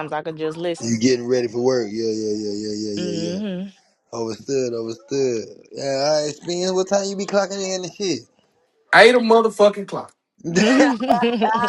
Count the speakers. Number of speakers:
three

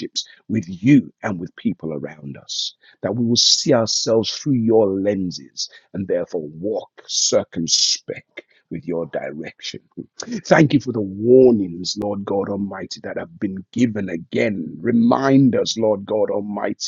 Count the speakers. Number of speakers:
one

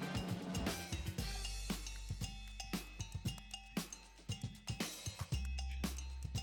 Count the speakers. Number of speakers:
zero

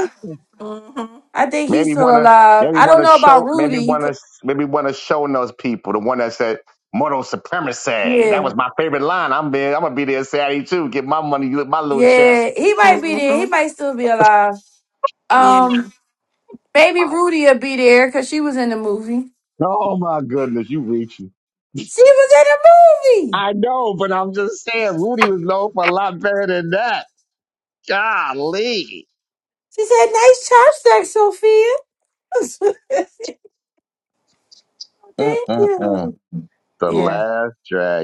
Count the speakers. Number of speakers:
three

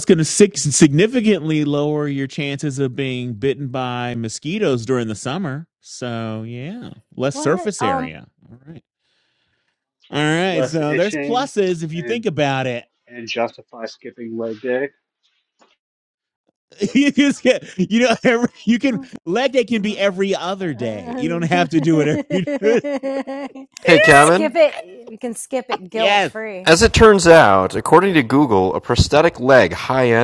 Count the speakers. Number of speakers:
four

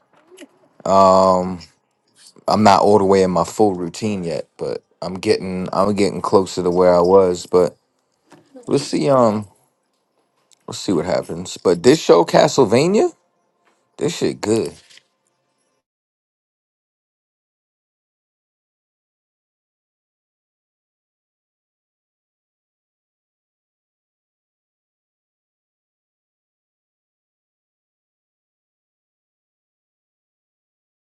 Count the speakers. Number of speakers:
one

